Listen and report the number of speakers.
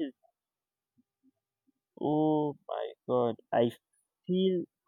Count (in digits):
1